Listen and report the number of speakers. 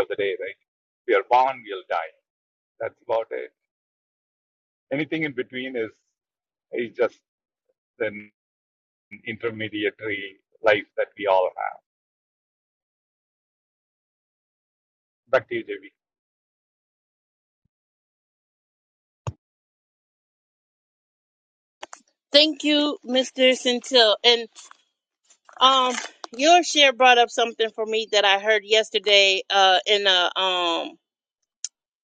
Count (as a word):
two